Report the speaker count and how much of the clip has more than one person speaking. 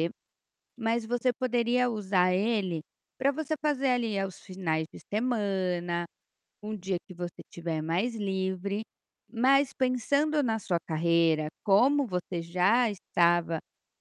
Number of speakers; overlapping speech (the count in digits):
1, no overlap